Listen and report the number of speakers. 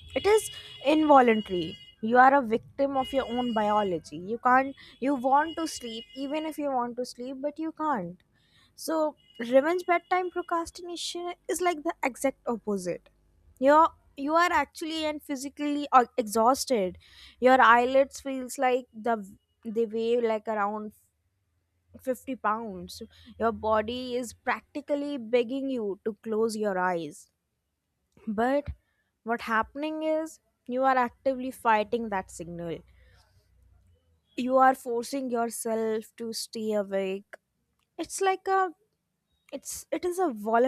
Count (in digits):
1